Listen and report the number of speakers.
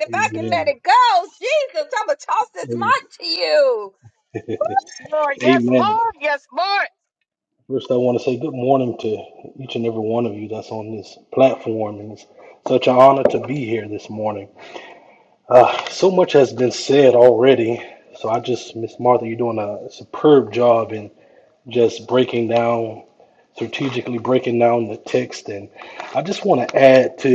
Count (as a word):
three